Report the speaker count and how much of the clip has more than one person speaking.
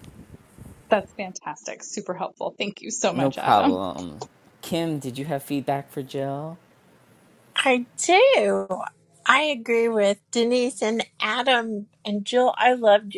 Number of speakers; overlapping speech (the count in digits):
3, about 5%